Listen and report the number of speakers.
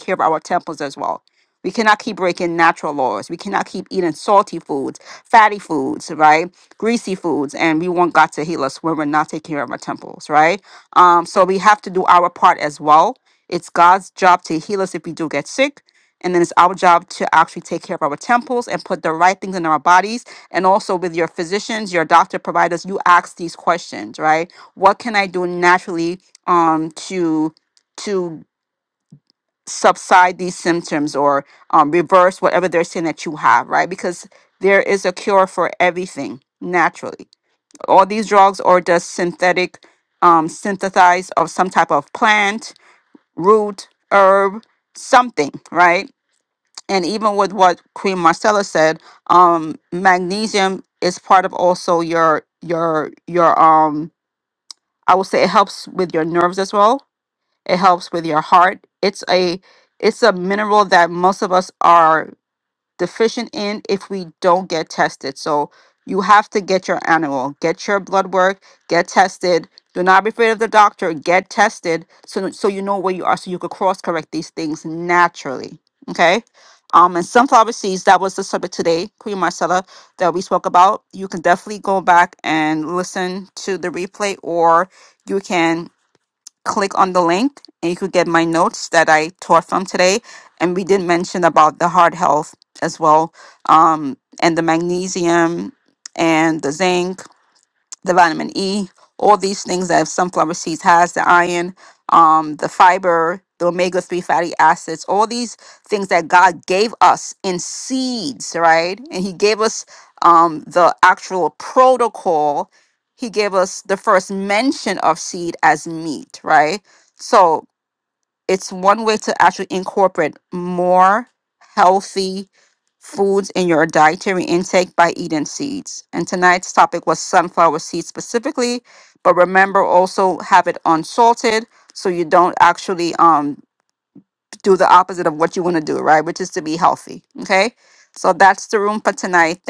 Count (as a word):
one